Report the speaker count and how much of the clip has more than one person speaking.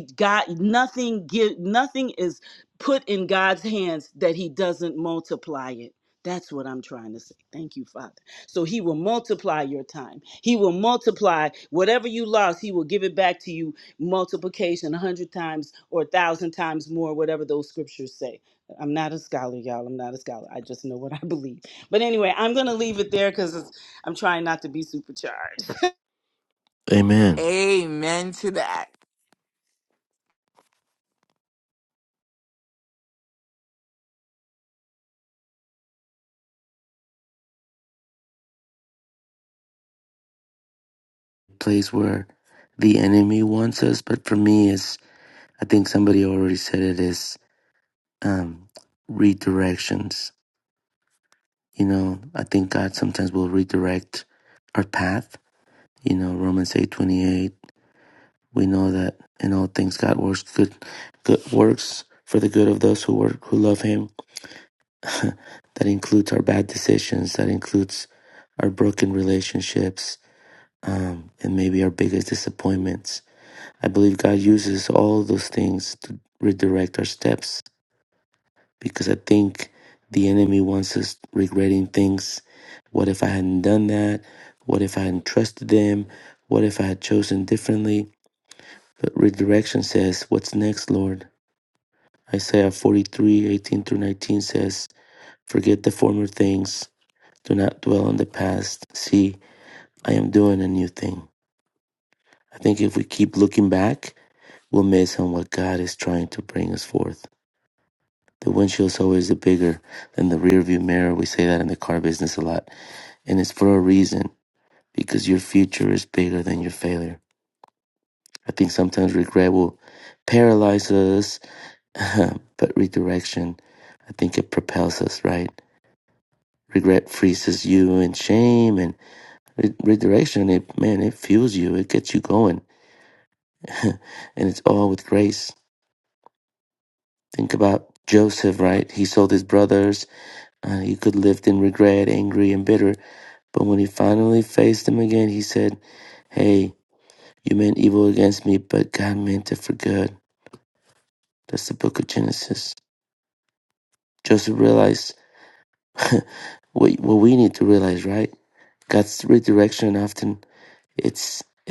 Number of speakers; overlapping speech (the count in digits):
3, under 1%